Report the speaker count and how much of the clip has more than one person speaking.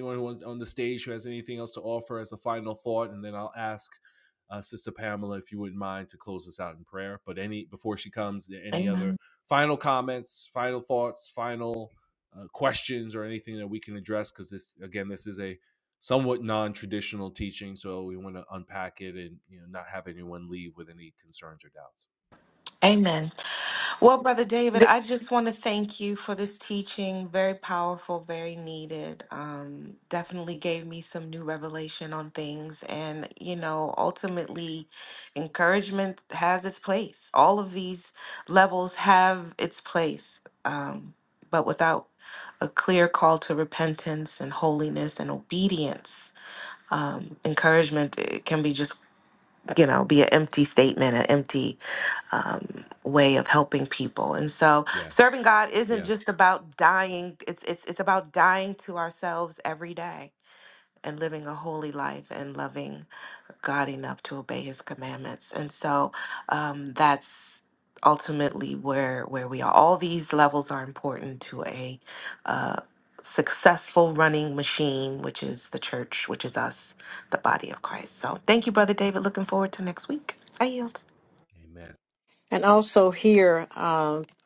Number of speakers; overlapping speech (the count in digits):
3, about 1%